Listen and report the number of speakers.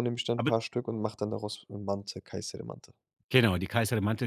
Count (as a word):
two